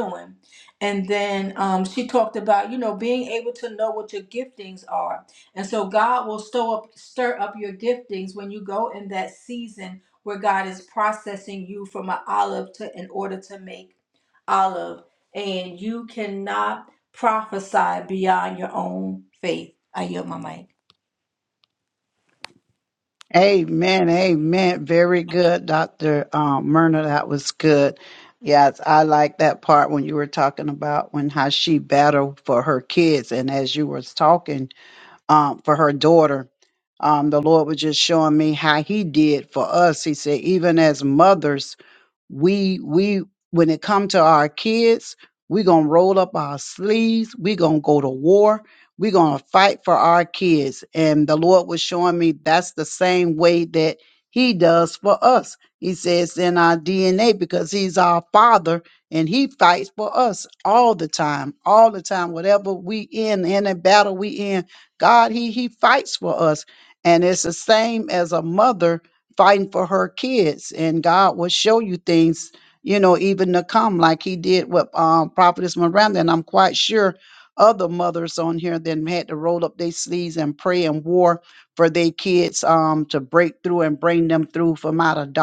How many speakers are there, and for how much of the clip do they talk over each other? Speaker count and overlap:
2, no overlap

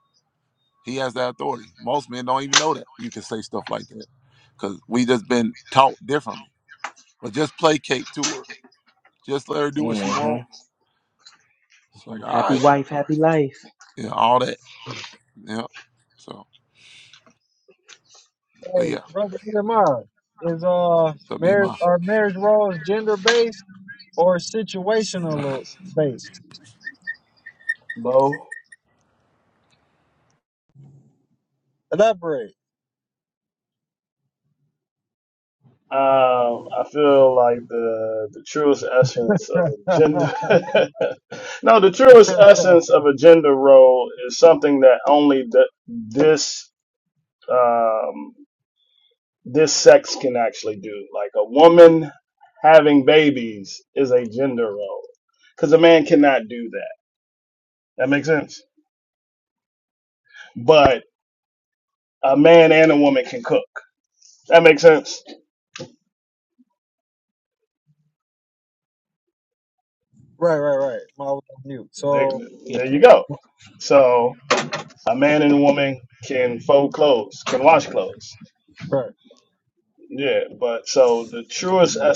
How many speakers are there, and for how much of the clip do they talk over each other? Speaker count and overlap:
4, about 3%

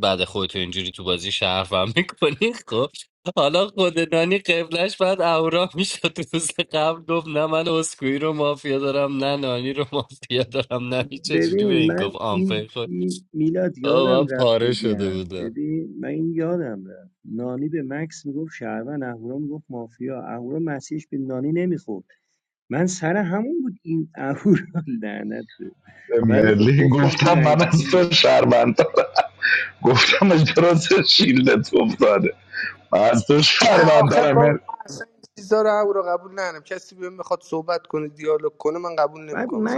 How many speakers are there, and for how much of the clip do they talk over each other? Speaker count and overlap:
4, about 16%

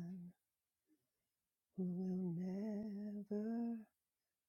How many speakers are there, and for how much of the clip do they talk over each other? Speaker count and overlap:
1, no overlap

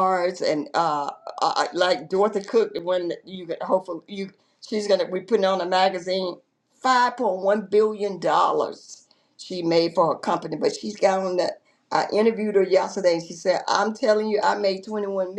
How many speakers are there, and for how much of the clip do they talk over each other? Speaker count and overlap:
1, no overlap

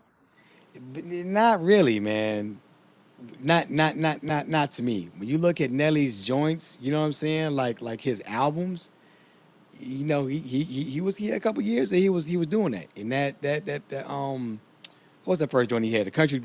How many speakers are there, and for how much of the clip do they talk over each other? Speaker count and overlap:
1, no overlap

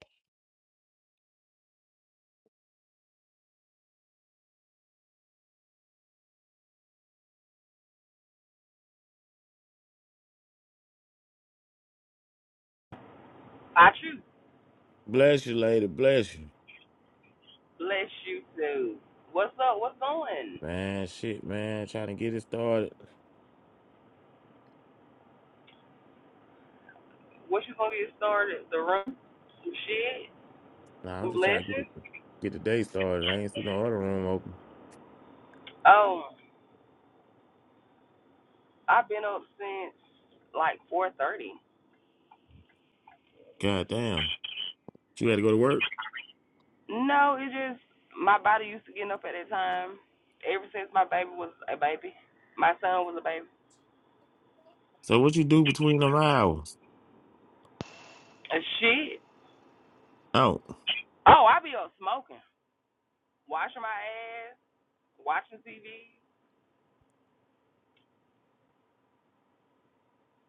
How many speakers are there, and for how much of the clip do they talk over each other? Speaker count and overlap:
2, about 1%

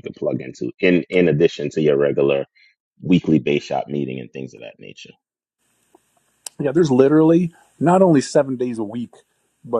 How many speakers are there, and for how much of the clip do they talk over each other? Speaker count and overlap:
2, no overlap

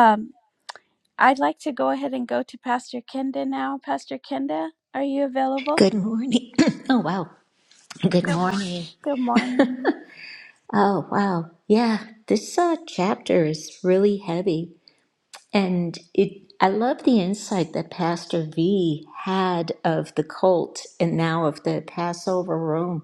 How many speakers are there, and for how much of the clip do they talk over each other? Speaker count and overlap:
2, under 1%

